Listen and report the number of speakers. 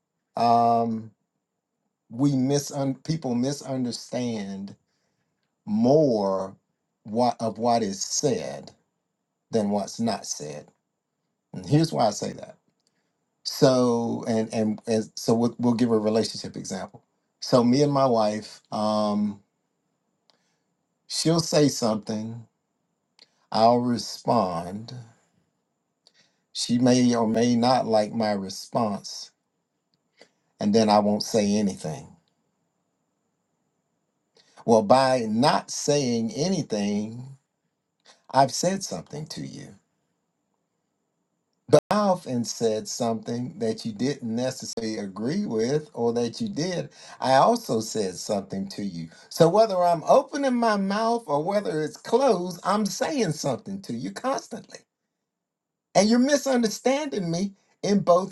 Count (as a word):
one